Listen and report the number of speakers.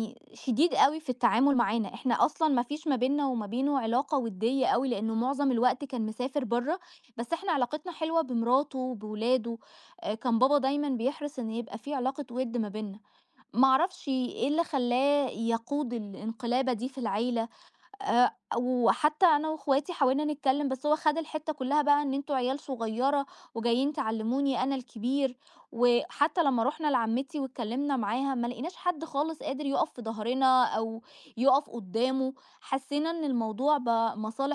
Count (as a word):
one